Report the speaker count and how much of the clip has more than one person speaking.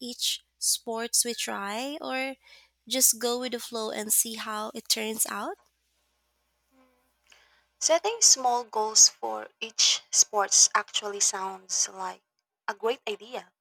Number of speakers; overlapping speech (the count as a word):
two, no overlap